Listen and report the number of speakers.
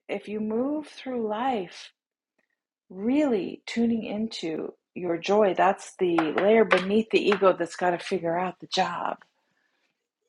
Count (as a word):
one